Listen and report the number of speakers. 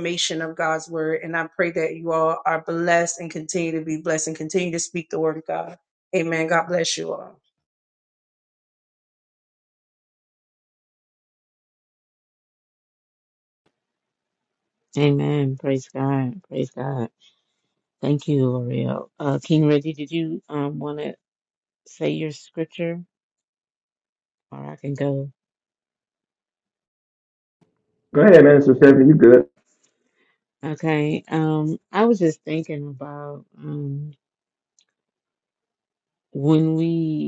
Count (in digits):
3